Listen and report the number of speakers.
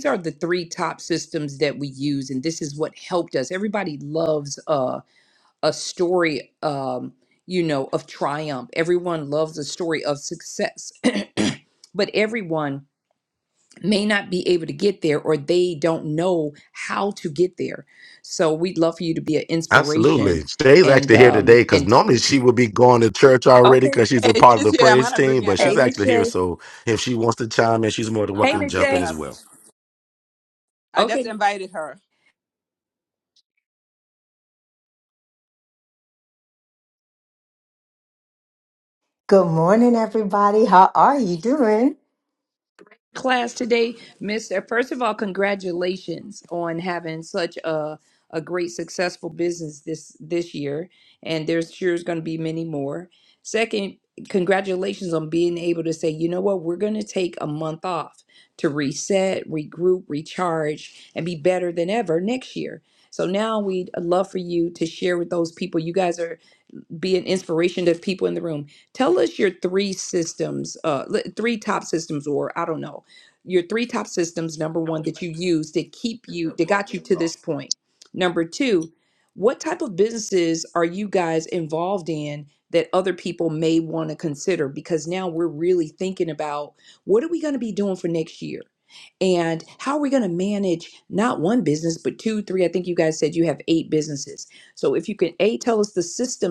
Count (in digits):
4